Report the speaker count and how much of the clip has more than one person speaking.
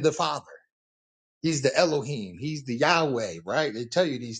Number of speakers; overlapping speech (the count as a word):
one, no overlap